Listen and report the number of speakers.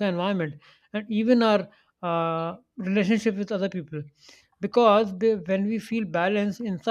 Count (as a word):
one